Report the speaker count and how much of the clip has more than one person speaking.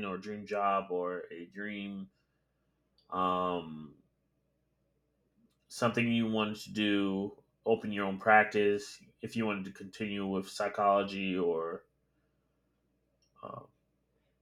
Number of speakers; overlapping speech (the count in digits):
1, no overlap